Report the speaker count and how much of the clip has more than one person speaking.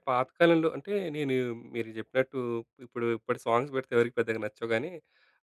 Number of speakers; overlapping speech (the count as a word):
one, no overlap